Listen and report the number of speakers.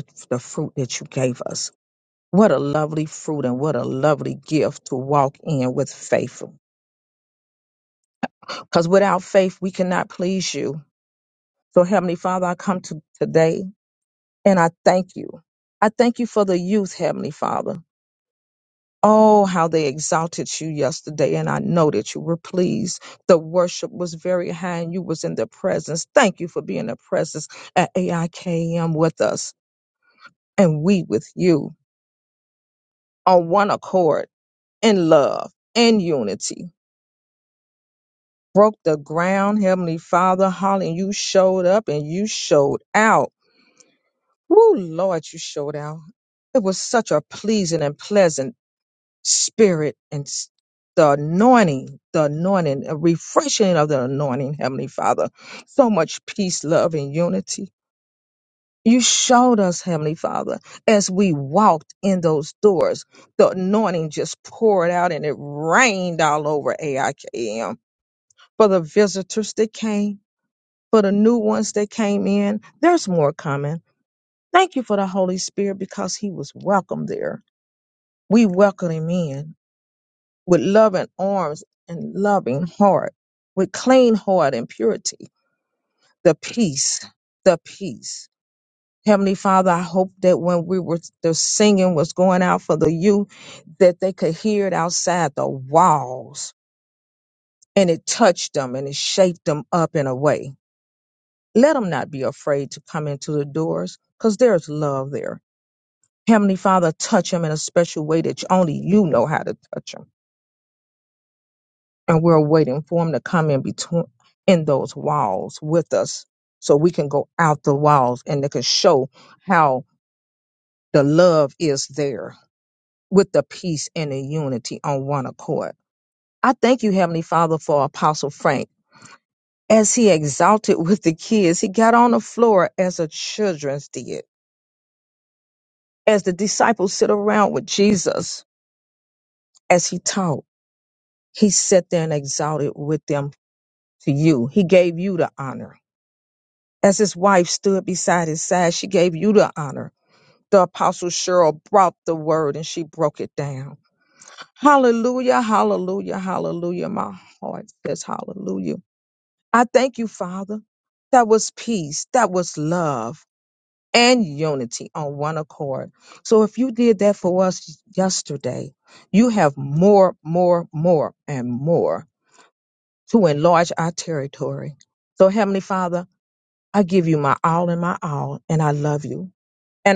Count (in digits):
1